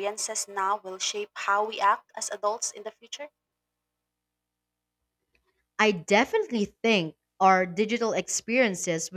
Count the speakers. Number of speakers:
2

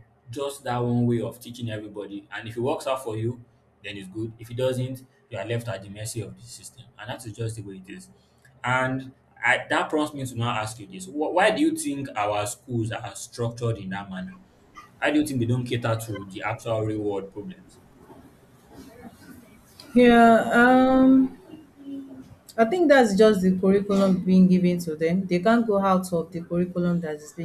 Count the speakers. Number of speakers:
2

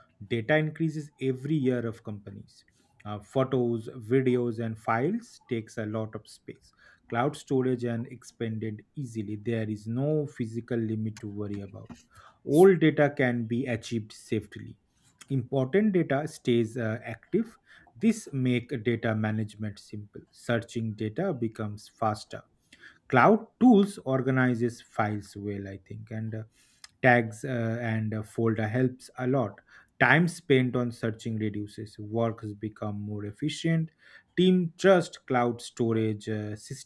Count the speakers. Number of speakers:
1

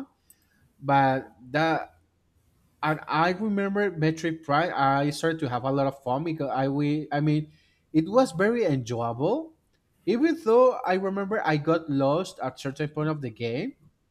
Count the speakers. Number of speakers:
1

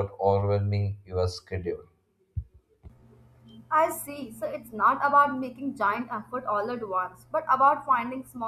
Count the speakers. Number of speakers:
2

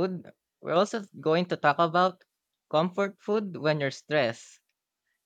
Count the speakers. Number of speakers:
1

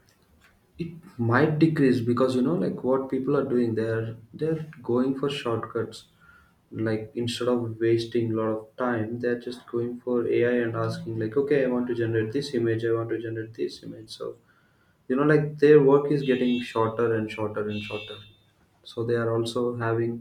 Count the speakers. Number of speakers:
1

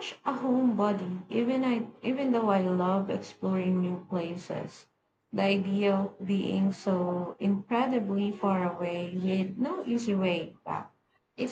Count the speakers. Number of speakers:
1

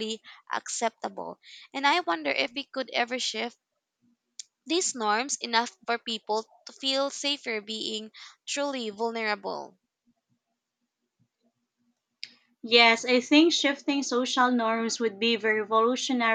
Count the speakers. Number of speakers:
2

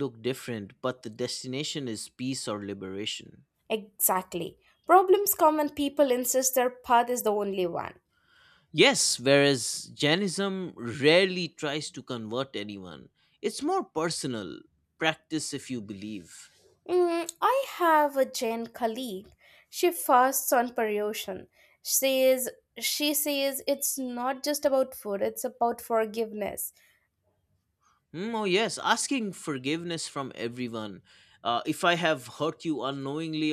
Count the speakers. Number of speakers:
2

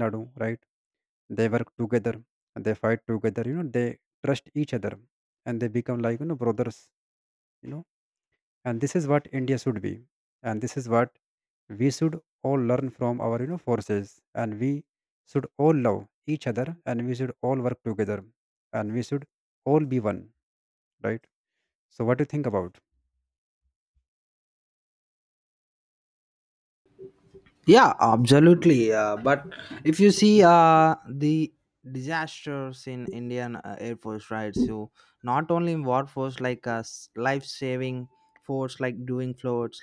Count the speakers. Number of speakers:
2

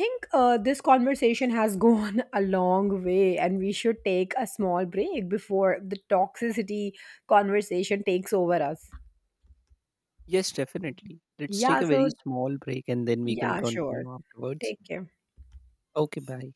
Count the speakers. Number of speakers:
2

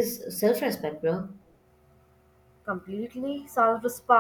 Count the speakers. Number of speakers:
2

